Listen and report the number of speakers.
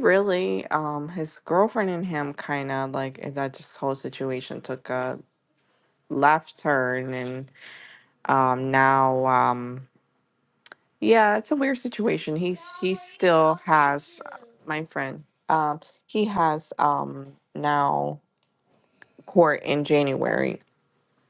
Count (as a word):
one